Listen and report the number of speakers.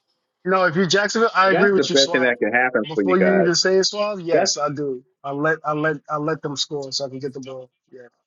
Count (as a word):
two